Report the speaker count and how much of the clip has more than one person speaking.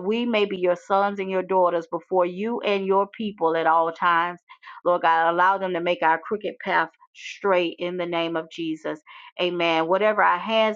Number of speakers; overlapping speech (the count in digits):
1, no overlap